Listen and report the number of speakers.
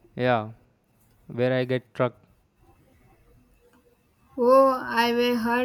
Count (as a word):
two